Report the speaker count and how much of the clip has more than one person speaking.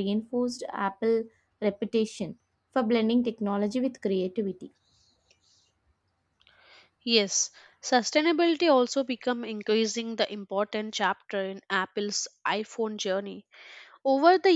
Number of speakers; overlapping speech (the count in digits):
2, no overlap